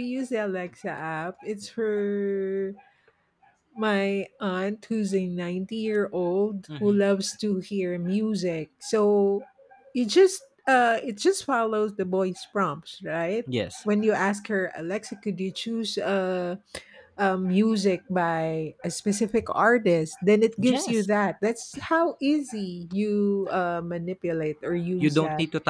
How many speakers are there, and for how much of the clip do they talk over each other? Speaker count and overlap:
two, about 4%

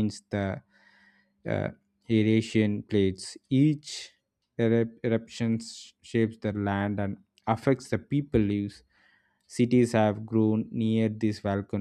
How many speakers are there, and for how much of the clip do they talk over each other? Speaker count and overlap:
one, no overlap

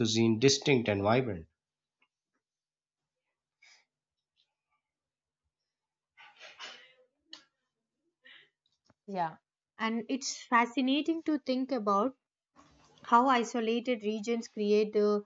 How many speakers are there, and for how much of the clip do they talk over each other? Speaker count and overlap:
two, no overlap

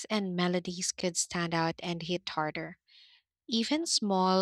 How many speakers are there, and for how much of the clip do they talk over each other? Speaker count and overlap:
one, no overlap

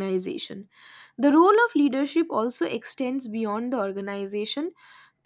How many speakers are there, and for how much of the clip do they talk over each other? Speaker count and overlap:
one, no overlap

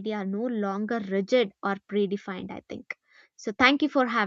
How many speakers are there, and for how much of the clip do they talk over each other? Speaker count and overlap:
one, no overlap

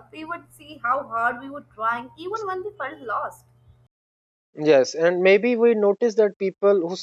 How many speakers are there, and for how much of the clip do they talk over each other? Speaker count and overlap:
two, no overlap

